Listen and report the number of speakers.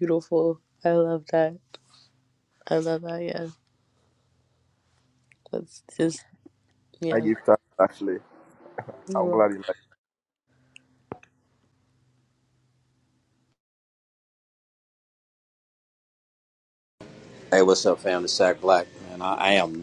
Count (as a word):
three